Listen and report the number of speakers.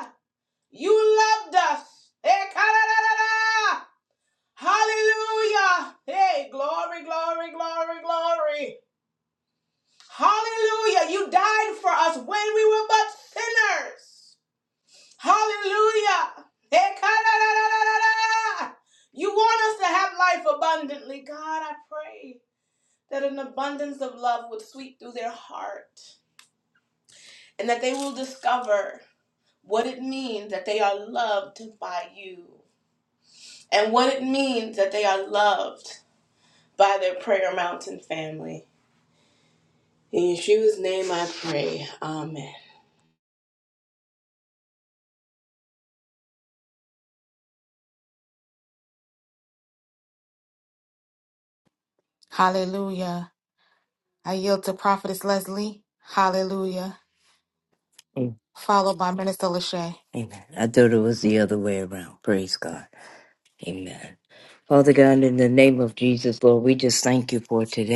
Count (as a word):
three